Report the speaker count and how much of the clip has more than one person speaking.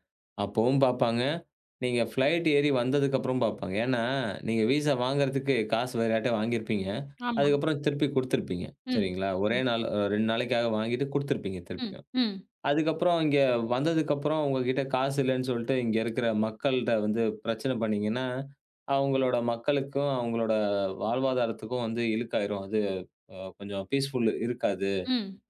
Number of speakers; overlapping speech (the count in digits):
2, about 3%